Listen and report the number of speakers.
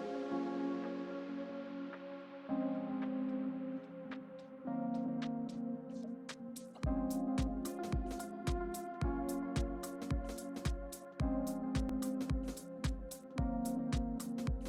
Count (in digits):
0